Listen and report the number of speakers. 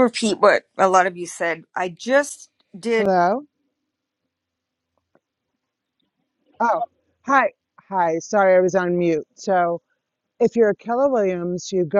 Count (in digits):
2